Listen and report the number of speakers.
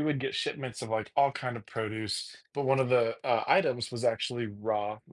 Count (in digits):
1